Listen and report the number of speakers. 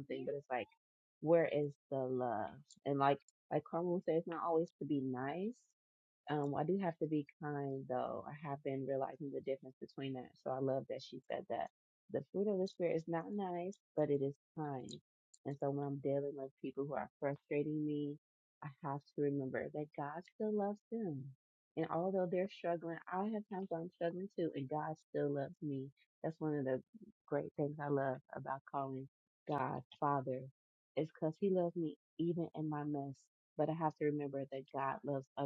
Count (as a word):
one